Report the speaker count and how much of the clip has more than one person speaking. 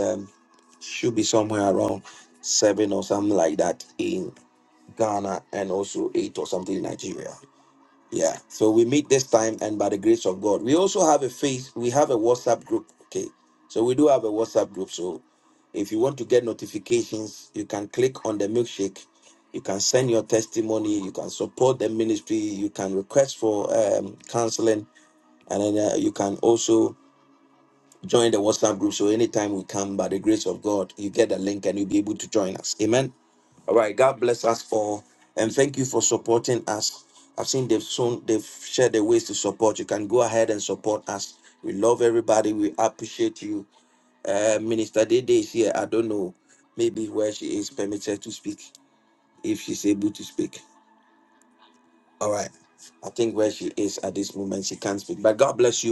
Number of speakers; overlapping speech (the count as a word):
one, no overlap